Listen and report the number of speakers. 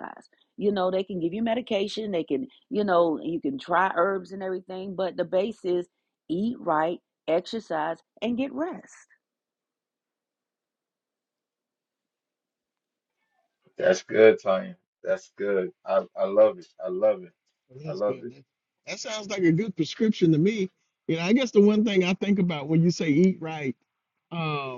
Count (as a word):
three